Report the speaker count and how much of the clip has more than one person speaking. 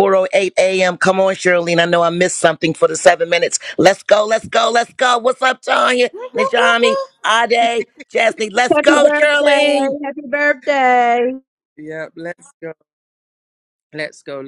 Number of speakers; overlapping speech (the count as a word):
three, about 6%